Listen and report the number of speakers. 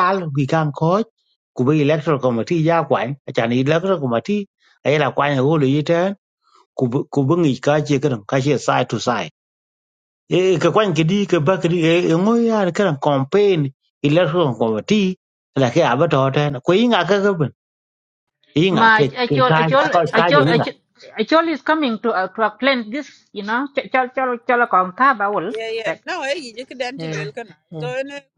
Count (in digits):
3